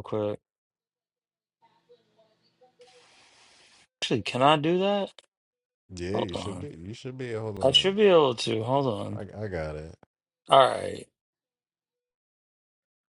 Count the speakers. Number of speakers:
two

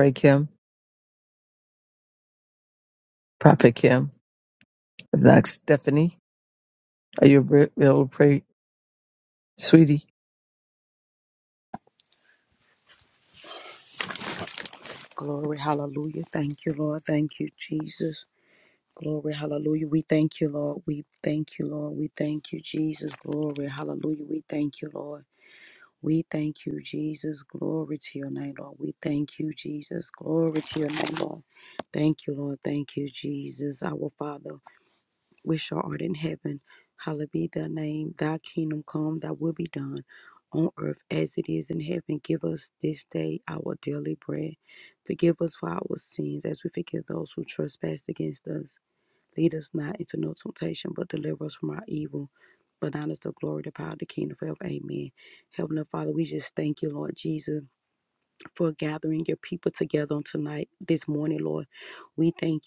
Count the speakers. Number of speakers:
two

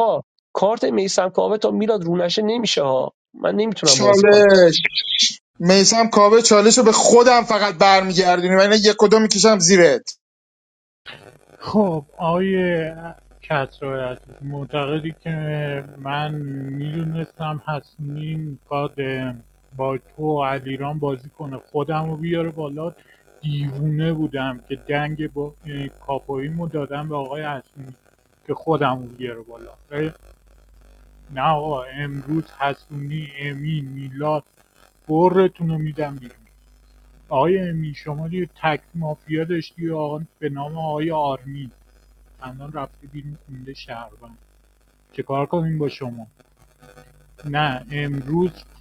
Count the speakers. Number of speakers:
three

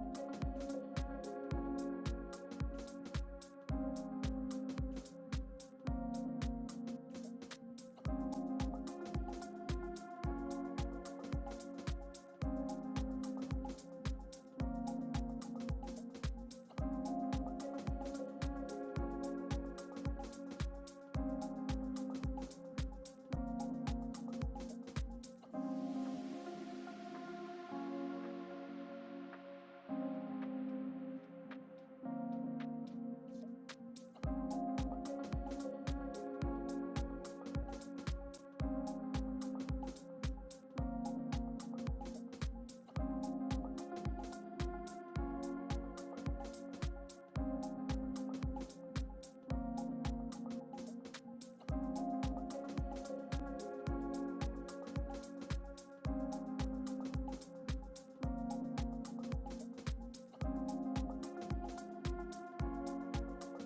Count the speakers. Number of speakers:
zero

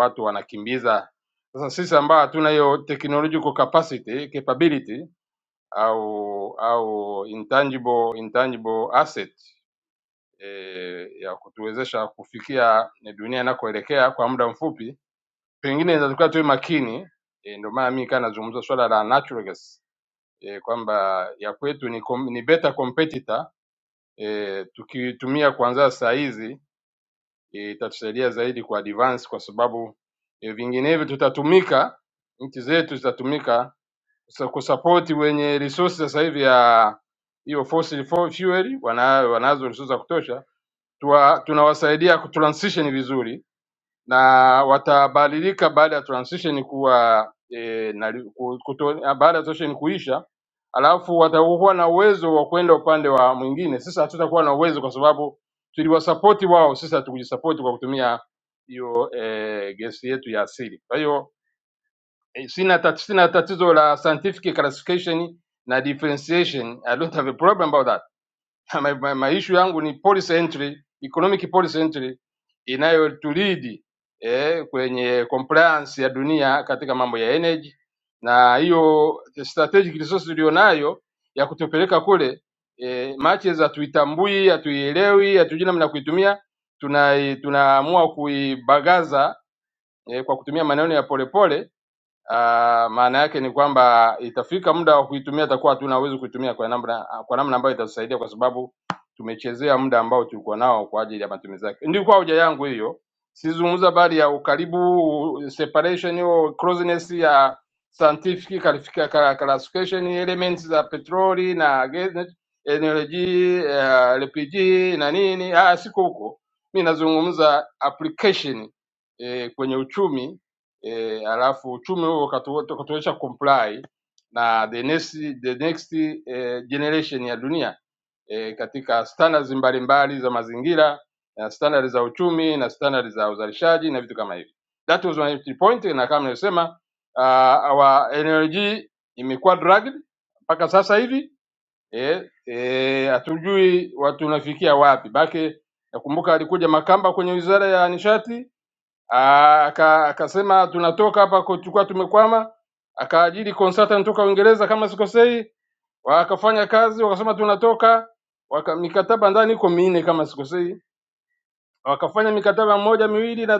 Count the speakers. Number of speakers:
one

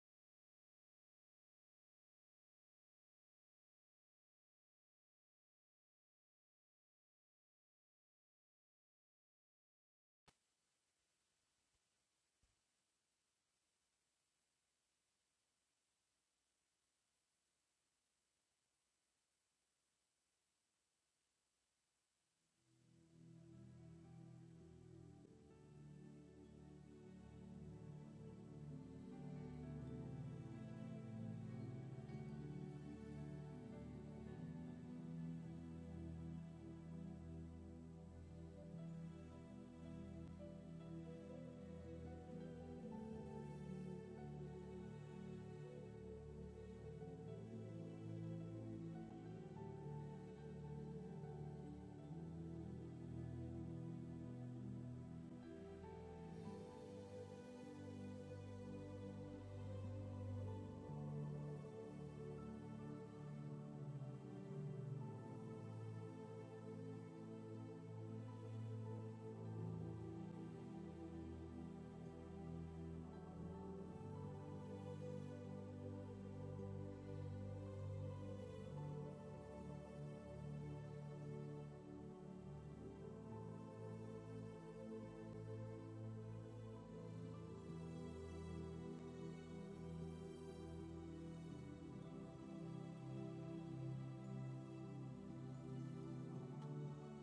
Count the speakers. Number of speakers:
zero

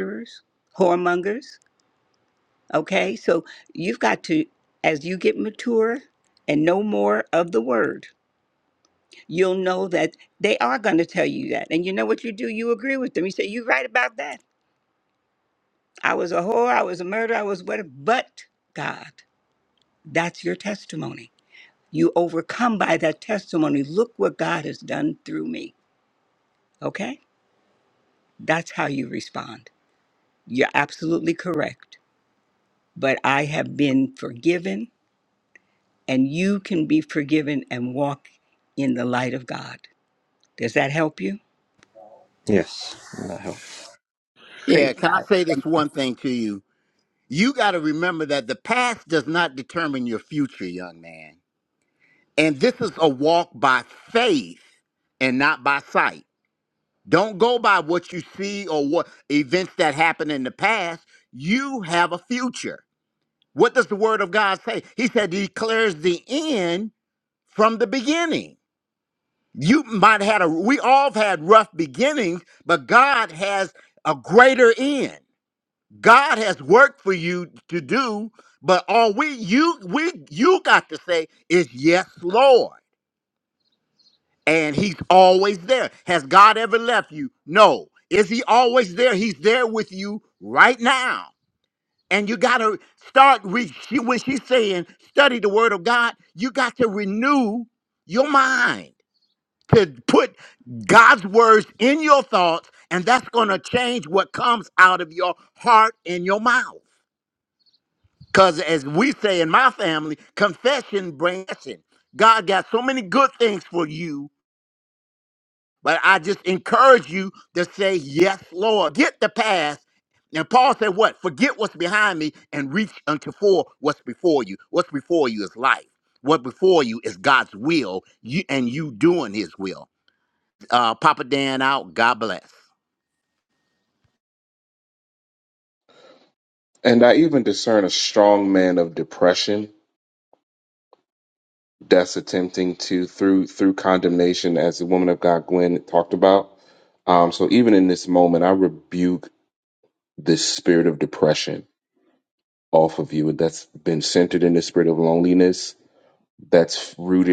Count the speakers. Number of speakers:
four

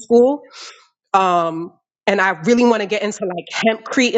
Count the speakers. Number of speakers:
one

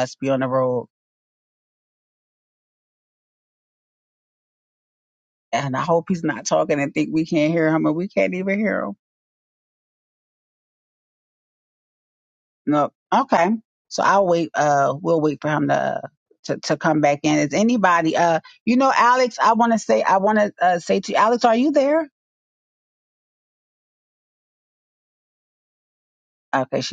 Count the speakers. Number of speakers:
one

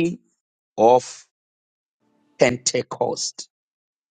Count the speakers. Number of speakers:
one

